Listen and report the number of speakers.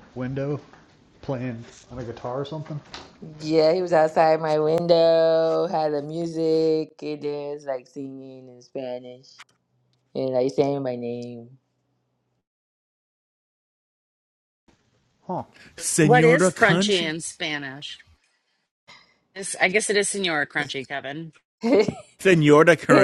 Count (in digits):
4